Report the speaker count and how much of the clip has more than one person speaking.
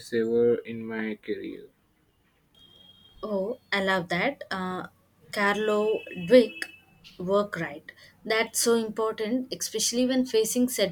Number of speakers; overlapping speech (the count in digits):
2, no overlap